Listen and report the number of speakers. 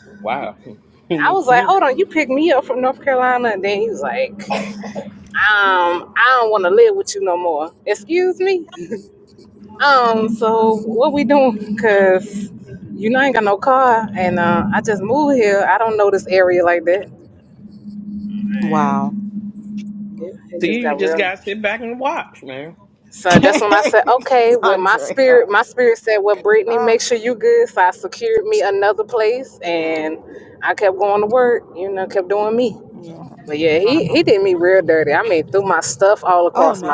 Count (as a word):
three